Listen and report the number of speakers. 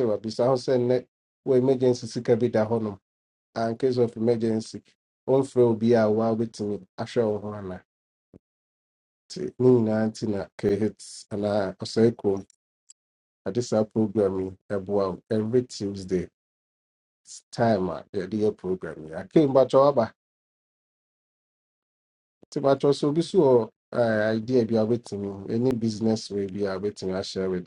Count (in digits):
1